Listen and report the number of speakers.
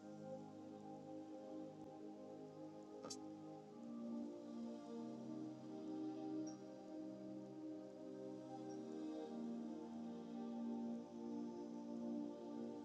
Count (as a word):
zero